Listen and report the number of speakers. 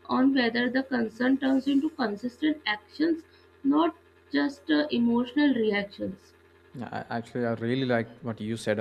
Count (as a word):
two